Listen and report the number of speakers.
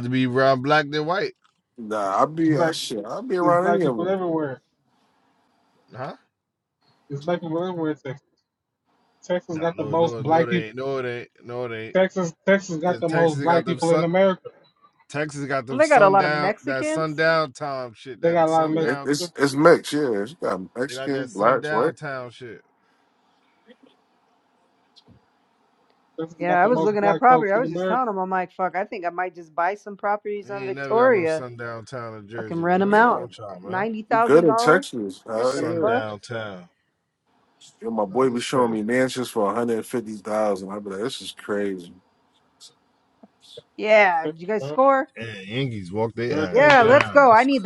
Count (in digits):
4